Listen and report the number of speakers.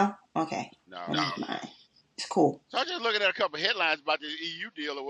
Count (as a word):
two